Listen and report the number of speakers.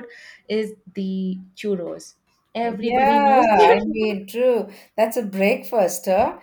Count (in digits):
2